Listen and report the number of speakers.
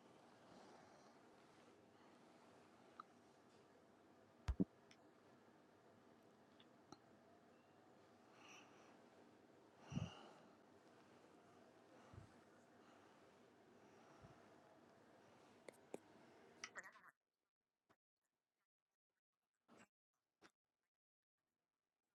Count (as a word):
zero